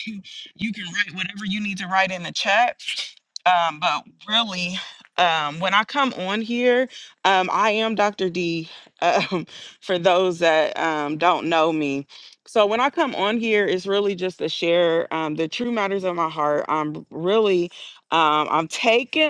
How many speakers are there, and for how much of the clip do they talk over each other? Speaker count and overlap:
1, no overlap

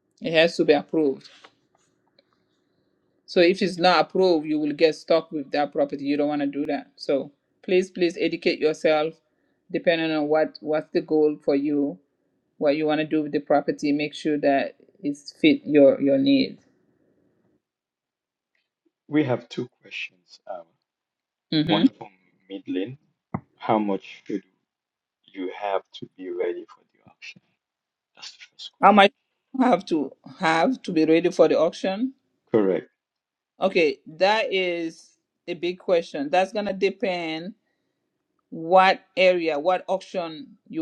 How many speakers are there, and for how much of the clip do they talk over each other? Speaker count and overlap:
2, about 1%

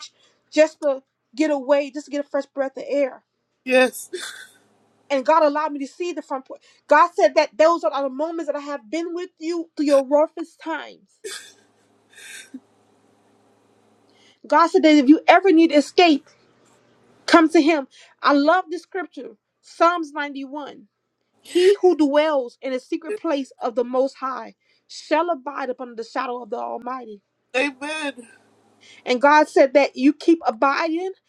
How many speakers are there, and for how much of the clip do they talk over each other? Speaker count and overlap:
2, no overlap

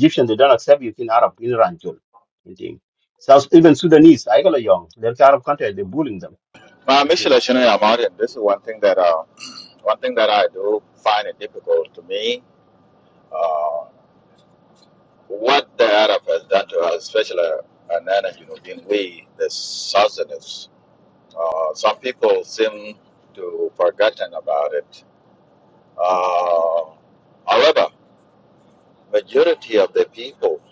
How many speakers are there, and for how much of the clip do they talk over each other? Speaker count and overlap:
2, about 1%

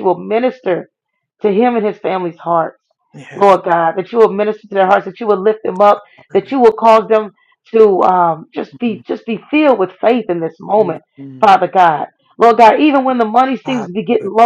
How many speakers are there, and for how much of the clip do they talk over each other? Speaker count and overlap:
2, about 11%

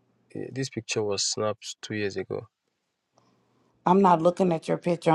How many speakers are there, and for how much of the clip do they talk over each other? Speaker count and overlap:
2, no overlap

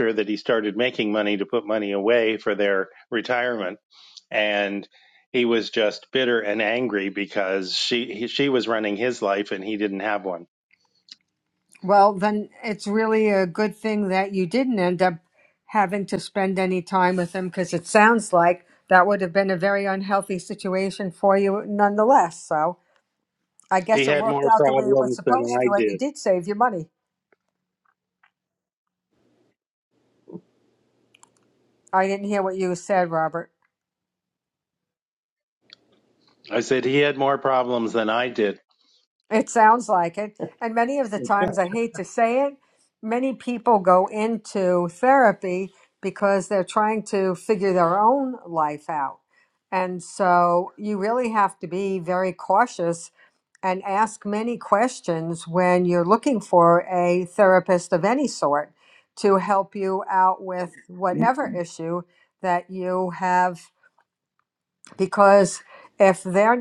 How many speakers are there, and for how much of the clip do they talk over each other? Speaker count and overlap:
2, about 3%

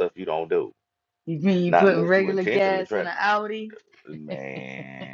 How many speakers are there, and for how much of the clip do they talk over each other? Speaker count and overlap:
2, about 28%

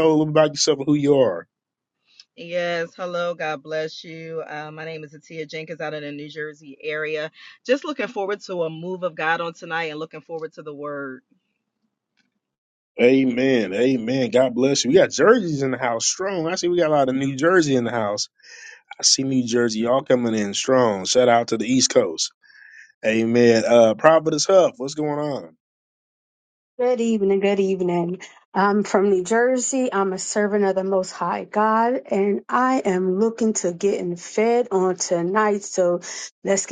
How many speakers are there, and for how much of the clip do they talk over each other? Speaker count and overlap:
3, no overlap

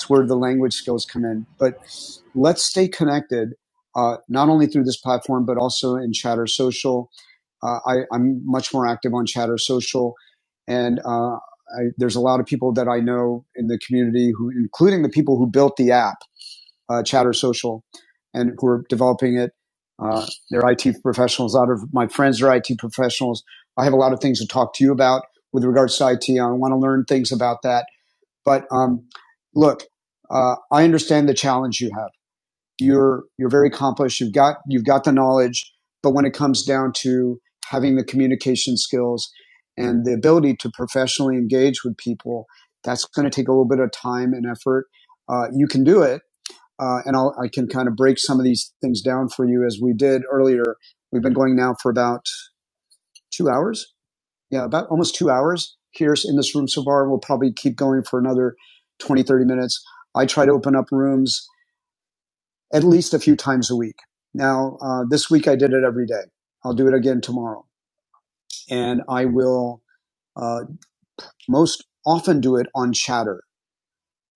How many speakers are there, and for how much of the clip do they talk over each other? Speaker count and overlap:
1, no overlap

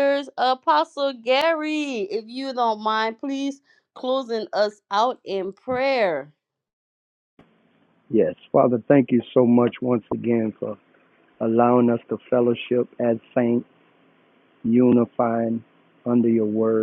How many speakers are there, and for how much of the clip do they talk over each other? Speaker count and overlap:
2, no overlap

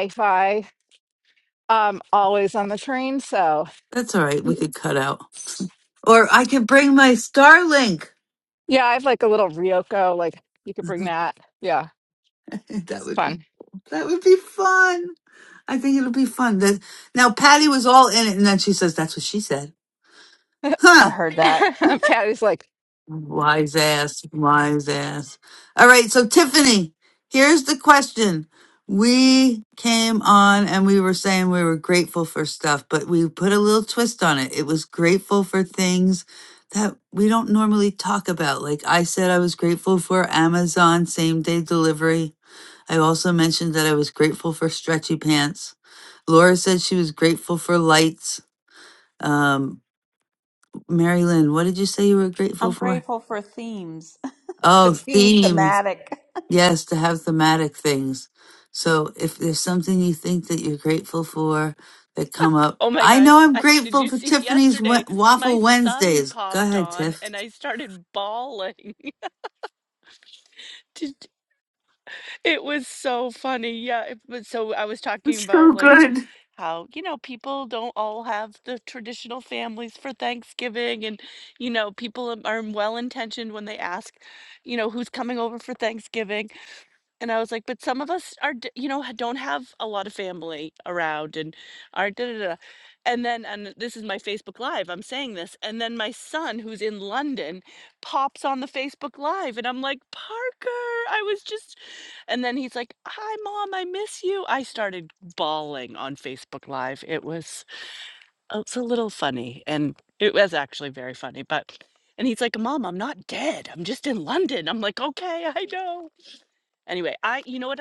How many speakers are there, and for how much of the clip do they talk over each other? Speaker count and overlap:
4, about 6%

